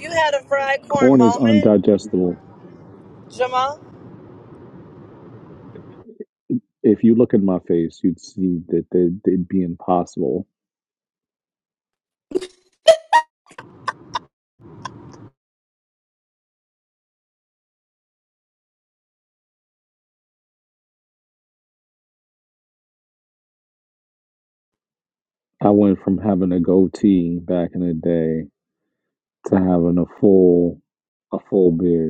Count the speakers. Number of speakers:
two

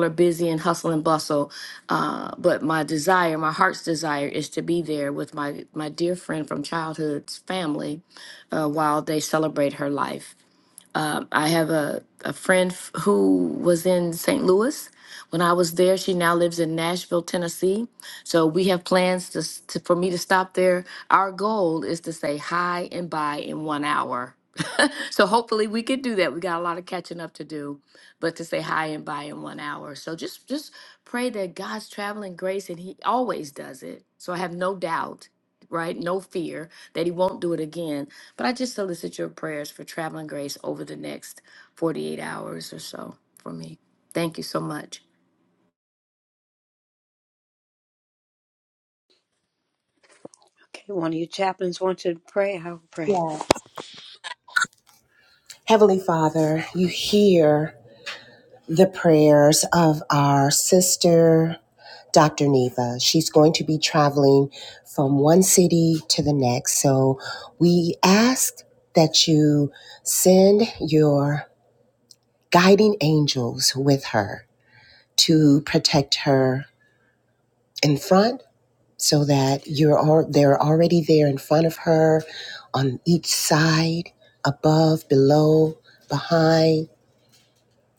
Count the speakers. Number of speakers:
three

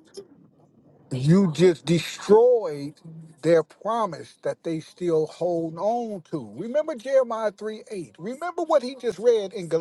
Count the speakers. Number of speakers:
one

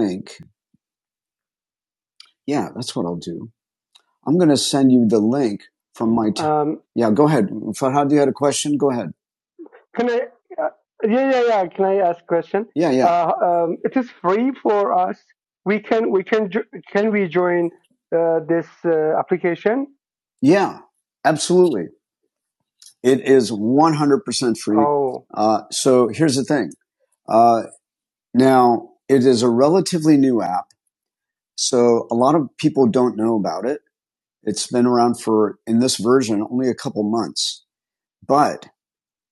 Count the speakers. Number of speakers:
two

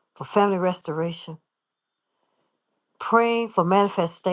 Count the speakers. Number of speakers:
one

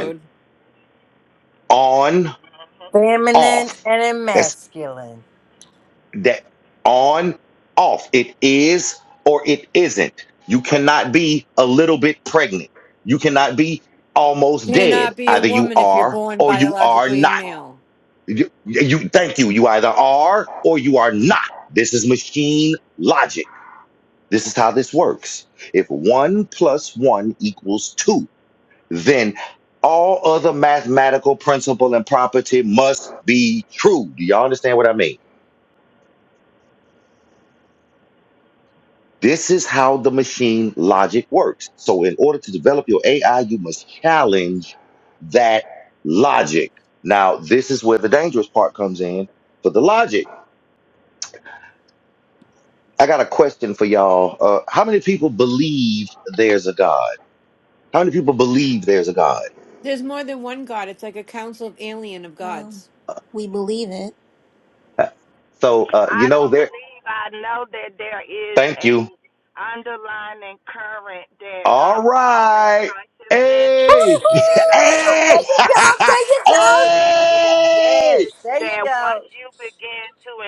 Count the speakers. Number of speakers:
five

